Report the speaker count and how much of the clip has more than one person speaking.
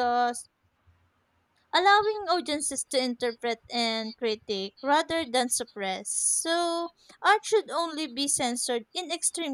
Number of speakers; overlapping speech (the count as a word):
one, no overlap